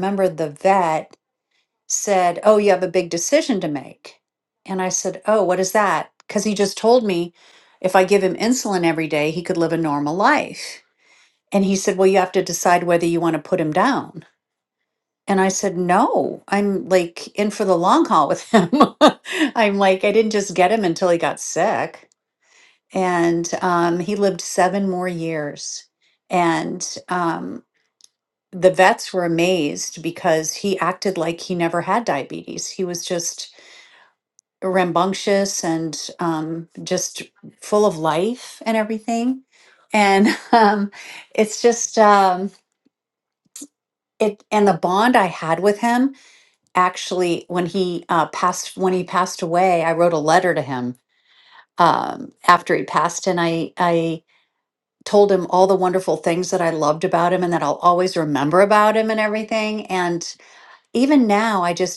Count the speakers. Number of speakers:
1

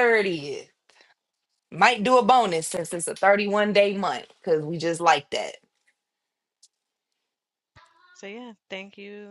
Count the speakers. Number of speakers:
2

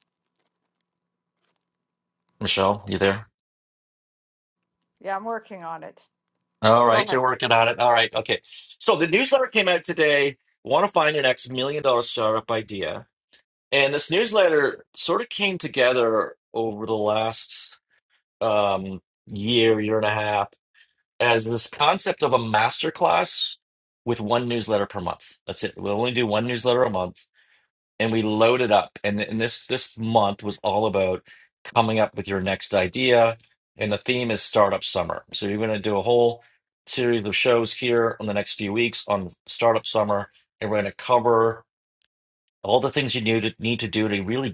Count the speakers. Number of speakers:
2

